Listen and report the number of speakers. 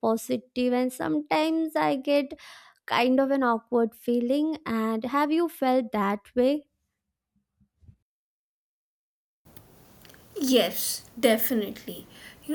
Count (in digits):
2